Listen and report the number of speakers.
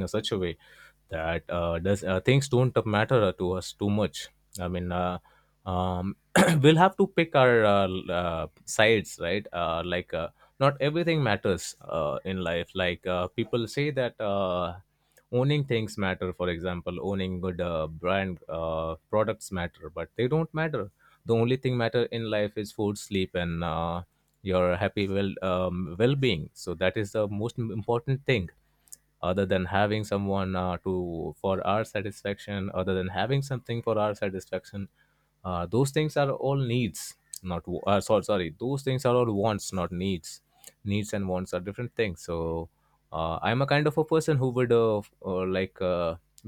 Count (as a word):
one